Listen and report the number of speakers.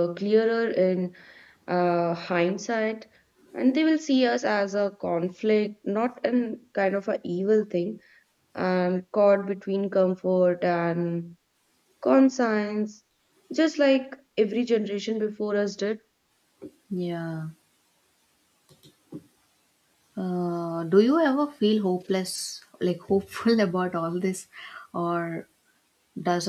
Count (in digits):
2